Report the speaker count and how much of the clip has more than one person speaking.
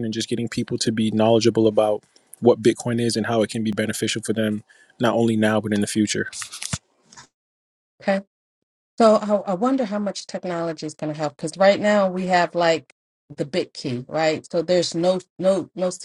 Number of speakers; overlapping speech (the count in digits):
2, no overlap